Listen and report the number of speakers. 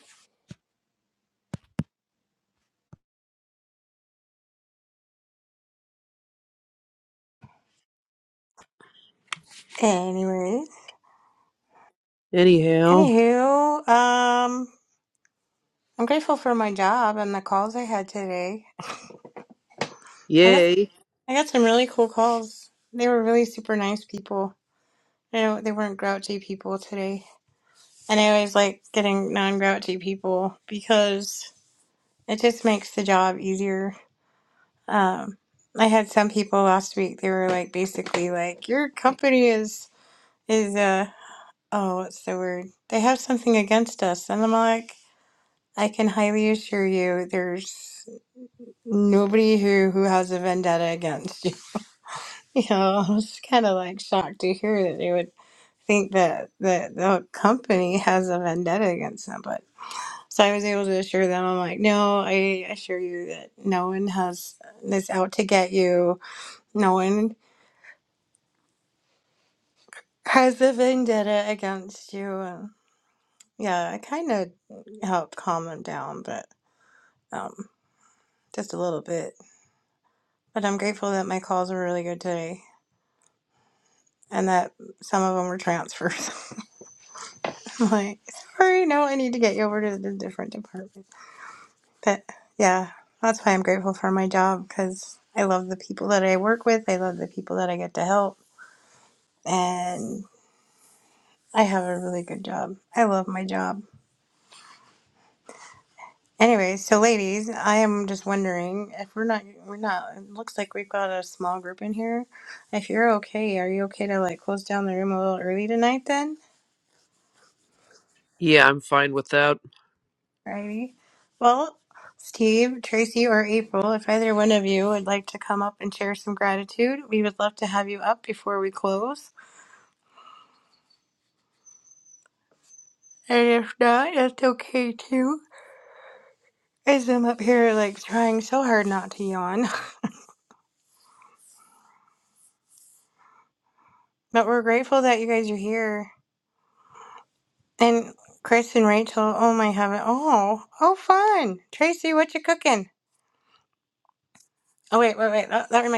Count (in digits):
2